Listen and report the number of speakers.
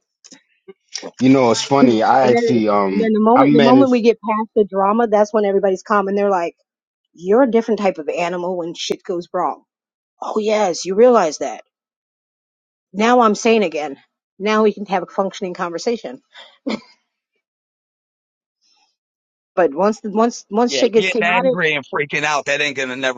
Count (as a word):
three